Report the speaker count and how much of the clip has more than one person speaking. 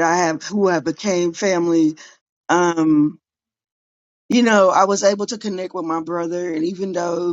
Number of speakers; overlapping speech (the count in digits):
1, no overlap